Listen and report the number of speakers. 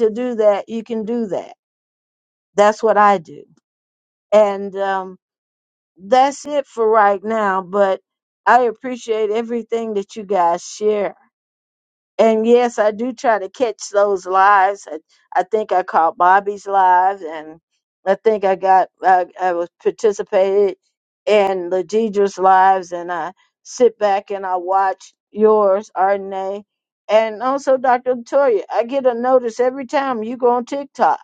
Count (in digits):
1